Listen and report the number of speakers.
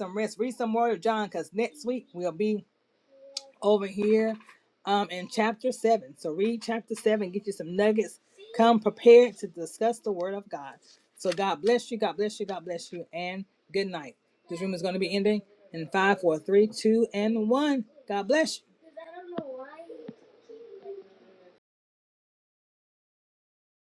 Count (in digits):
1